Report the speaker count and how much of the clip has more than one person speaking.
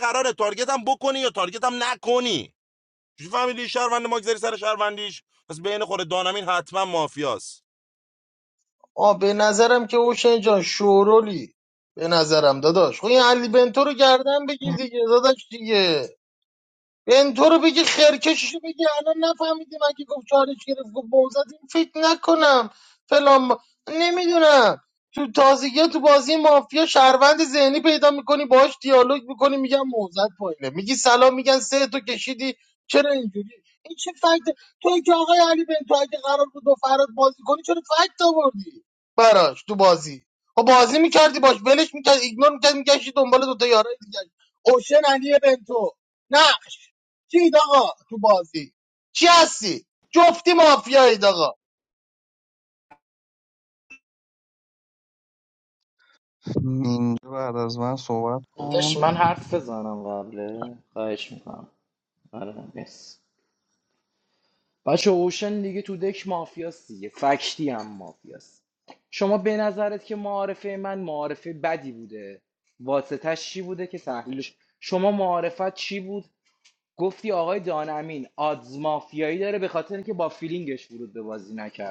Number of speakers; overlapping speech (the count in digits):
4, about 1%